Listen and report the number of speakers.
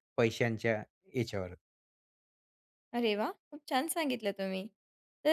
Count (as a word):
two